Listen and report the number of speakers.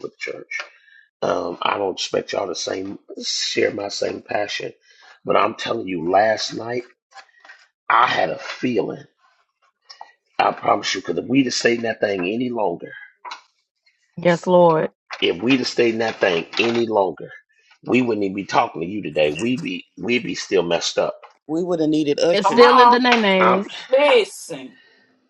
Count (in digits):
4